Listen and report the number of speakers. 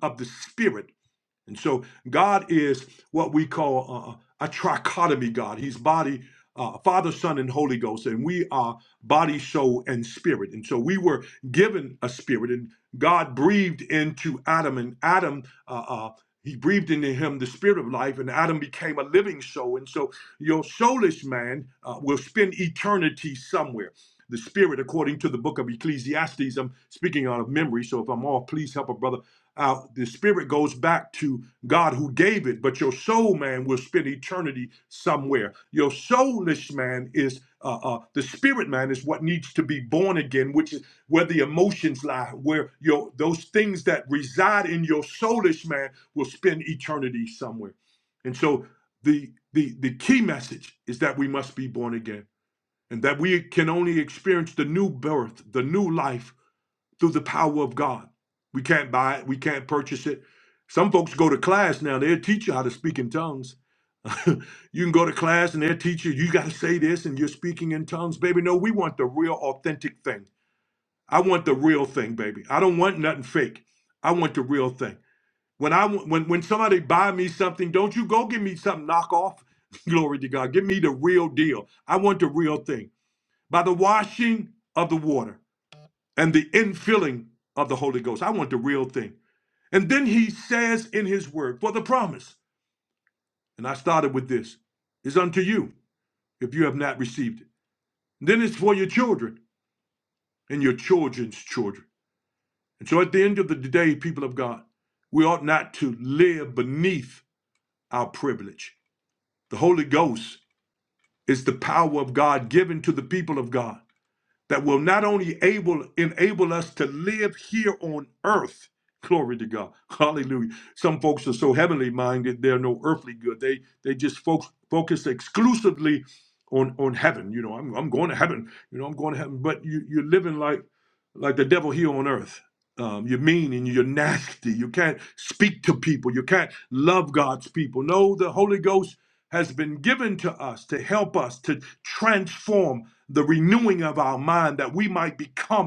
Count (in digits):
1